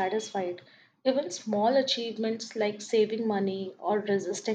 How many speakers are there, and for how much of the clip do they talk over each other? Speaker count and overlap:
1, no overlap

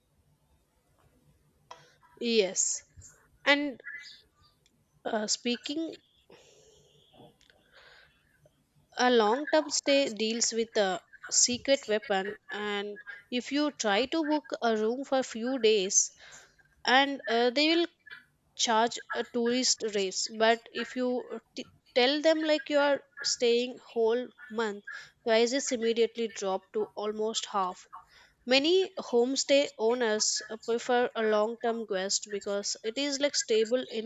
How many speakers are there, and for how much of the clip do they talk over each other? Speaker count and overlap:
1, no overlap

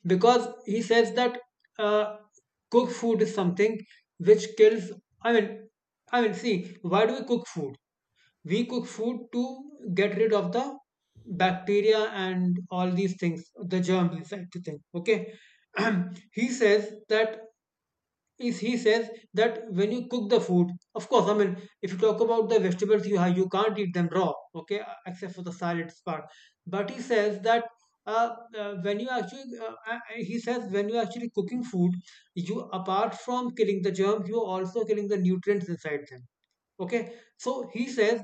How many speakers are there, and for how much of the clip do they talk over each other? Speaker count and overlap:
1, no overlap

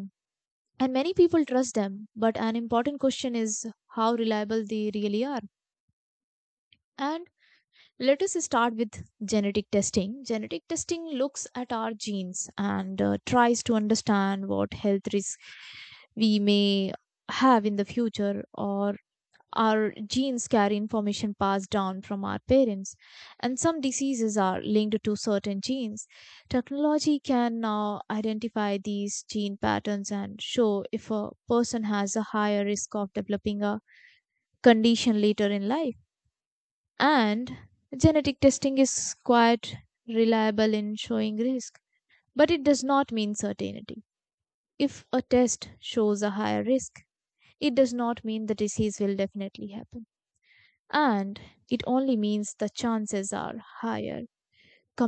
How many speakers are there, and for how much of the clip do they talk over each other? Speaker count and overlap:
1, no overlap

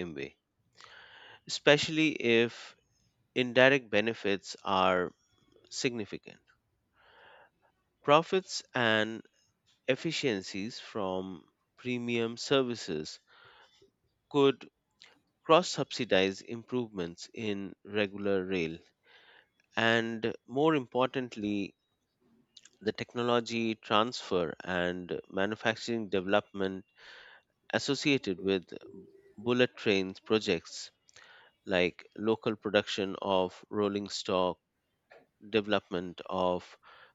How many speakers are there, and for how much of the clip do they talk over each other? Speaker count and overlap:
1, no overlap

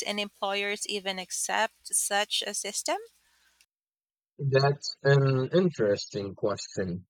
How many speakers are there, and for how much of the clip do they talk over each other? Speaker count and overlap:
2, no overlap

